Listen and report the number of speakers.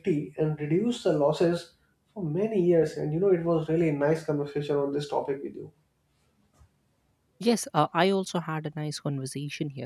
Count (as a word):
two